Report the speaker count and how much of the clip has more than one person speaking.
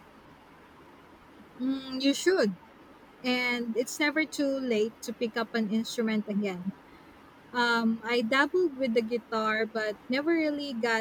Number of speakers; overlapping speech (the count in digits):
1, no overlap